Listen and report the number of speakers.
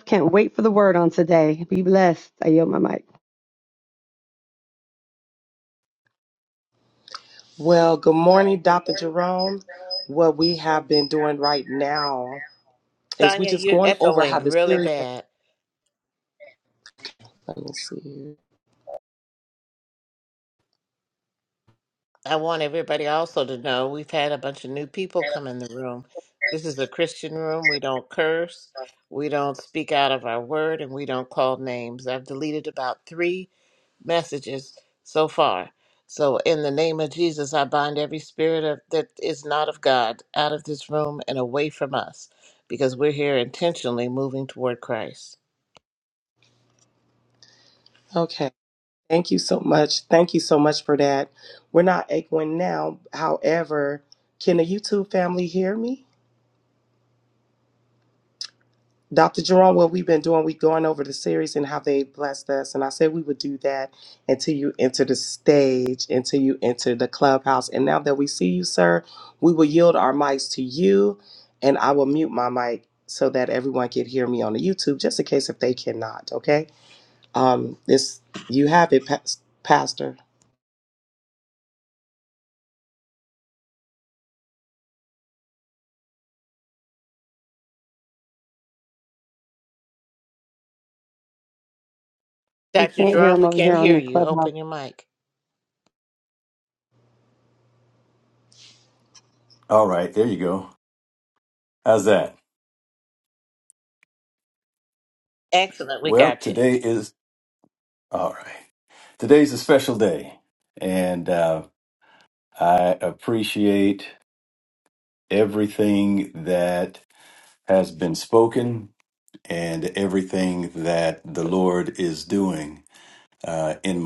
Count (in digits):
4